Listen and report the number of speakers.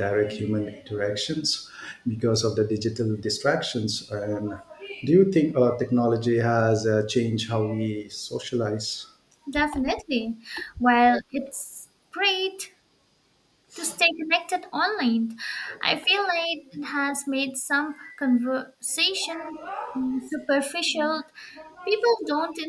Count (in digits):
2